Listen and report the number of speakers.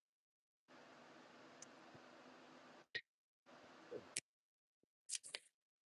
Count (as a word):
zero